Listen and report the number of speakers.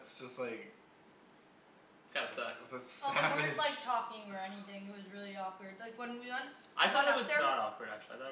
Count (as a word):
three